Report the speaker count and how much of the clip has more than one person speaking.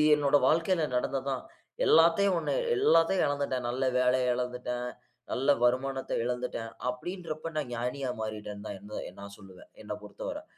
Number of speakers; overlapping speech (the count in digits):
1, no overlap